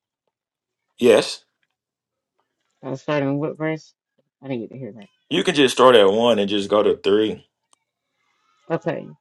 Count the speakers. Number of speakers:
two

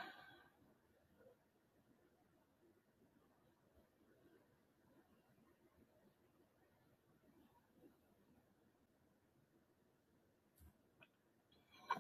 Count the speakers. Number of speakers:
zero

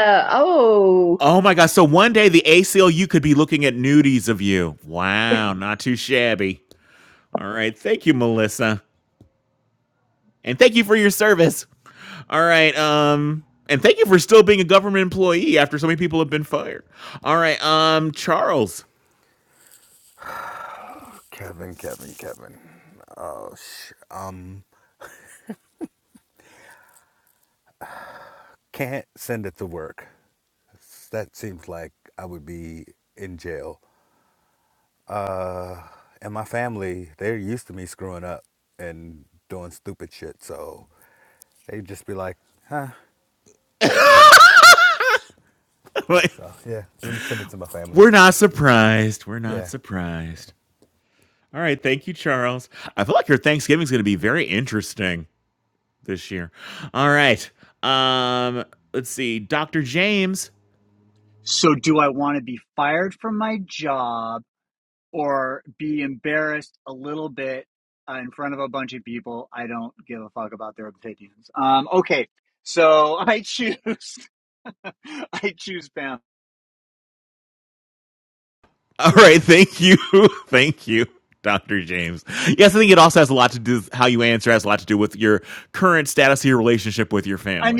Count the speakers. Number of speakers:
four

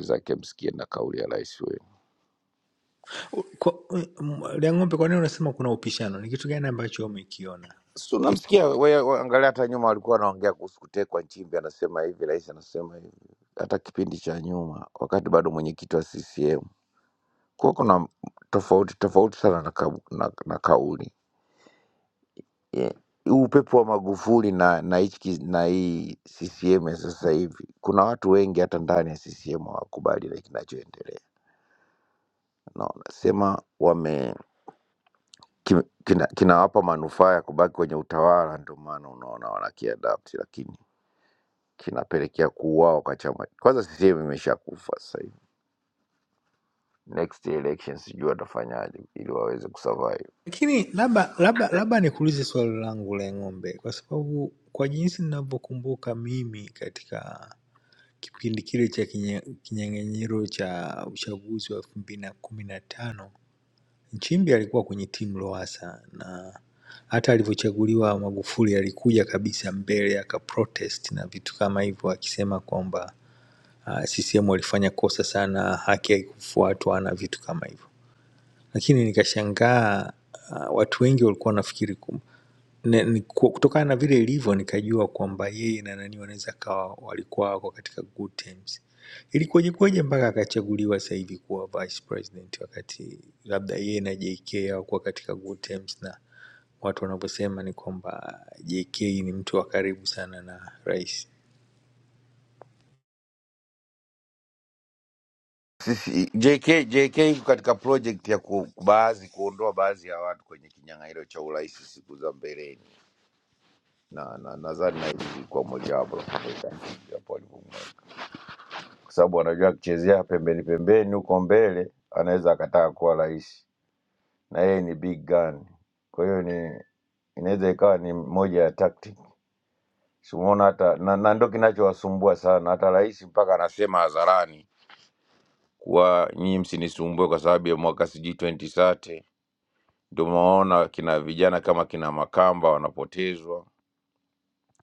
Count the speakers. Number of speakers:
two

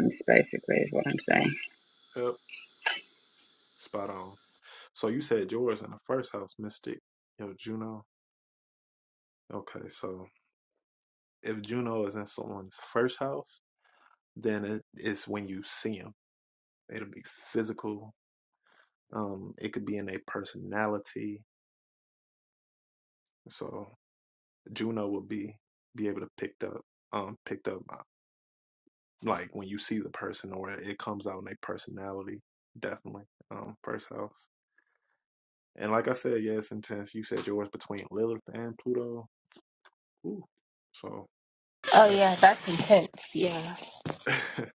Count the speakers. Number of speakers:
three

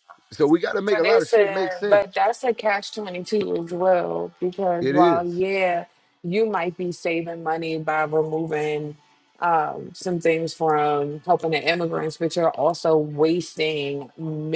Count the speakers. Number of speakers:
two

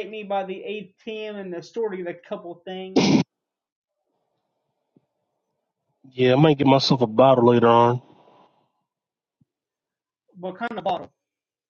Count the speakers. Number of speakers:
two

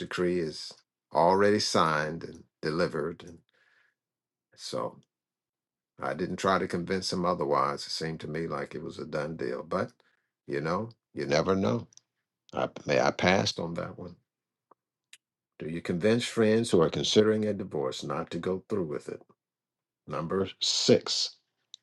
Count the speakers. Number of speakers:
one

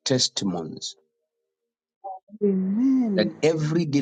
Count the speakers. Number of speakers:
two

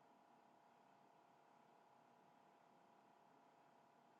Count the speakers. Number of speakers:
zero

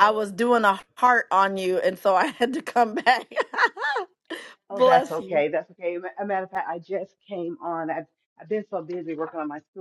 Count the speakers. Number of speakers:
two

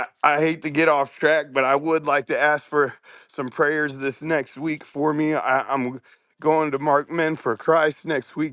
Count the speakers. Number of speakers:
one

